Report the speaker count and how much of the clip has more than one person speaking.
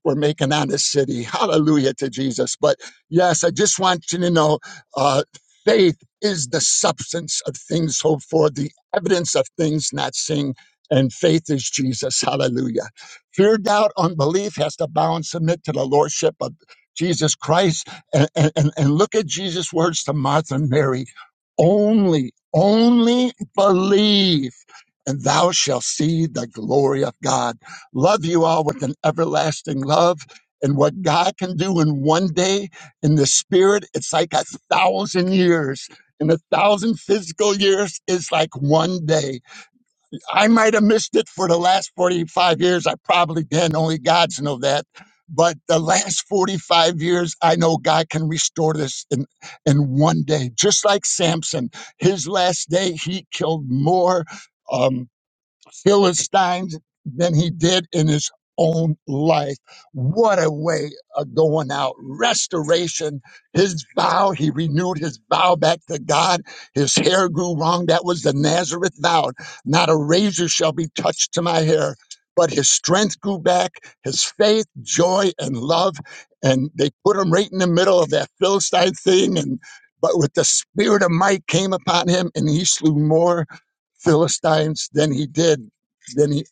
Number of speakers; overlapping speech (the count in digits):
1, no overlap